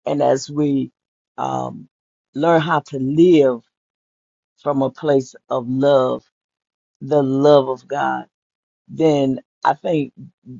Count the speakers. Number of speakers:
1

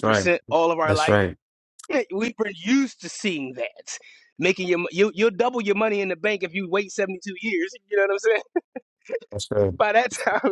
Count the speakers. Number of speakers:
2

